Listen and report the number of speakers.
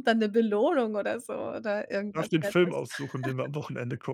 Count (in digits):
2